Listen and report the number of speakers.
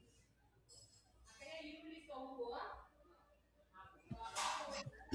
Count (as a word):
zero